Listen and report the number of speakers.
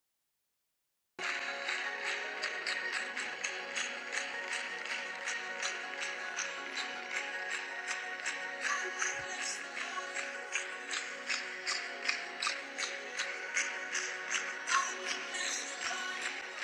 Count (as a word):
zero